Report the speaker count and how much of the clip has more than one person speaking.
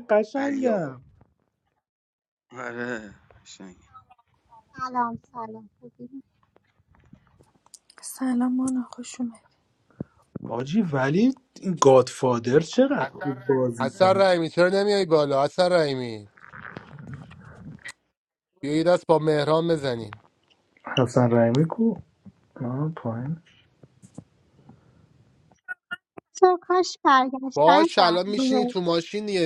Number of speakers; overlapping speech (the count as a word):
five, about 7%